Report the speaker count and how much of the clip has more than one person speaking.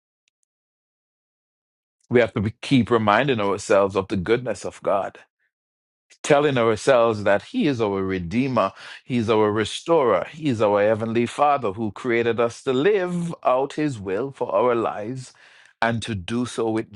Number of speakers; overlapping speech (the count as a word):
one, no overlap